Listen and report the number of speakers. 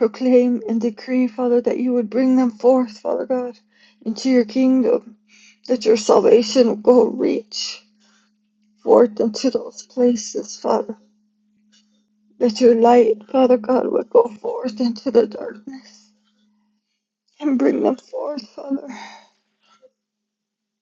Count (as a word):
one